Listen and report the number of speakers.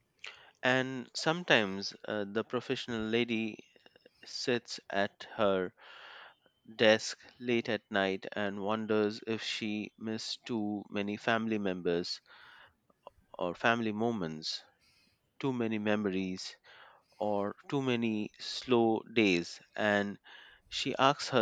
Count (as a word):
one